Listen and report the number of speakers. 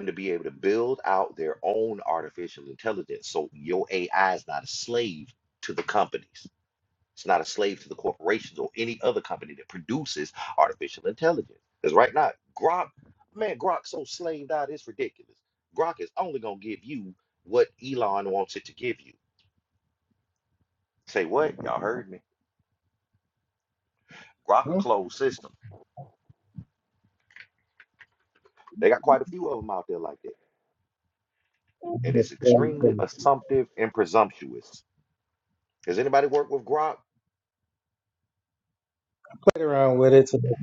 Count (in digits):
2